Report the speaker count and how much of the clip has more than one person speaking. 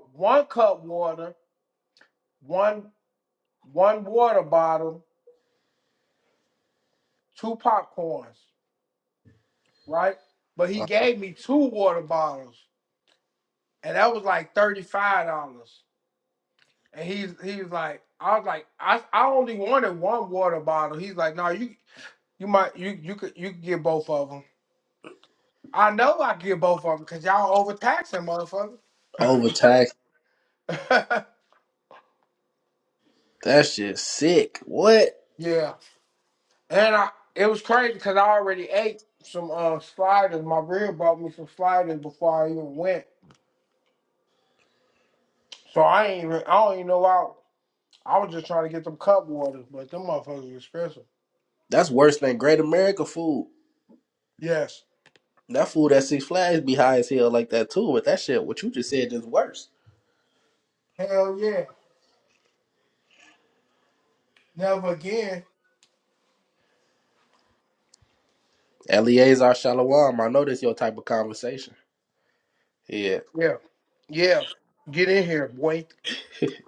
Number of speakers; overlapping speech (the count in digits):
2, under 1%